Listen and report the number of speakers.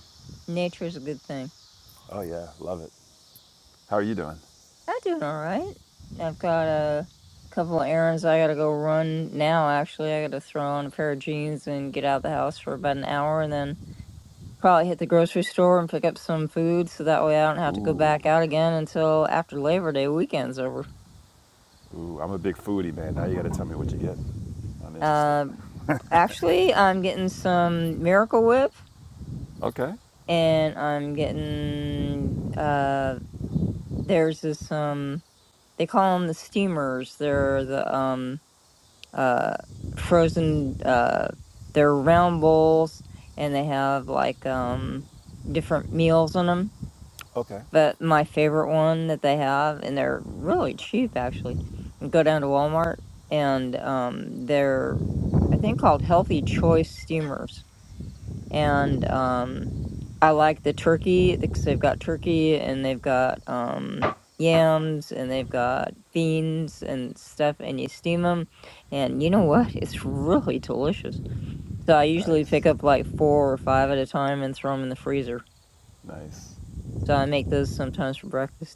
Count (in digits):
2